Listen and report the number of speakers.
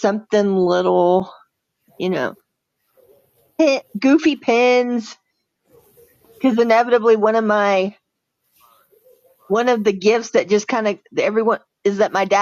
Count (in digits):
1